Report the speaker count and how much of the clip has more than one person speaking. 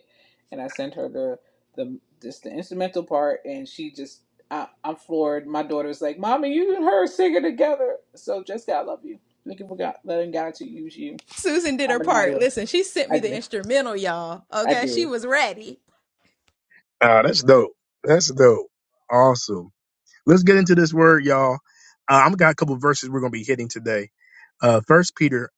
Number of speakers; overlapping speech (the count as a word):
three, about 5%